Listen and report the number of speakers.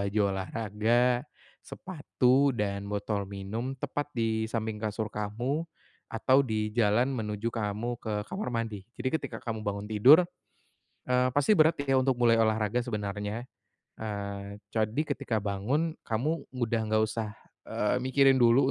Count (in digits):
1